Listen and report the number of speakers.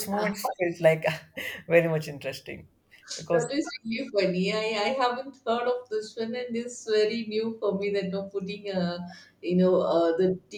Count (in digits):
2